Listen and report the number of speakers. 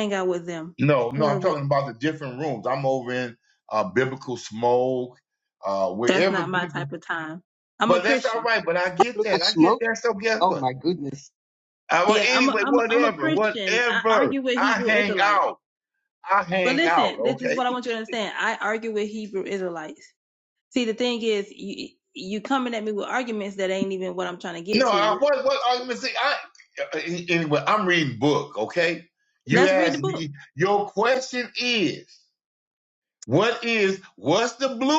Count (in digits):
3